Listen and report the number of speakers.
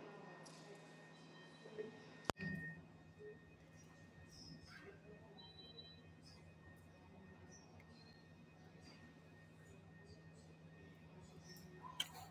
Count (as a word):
zero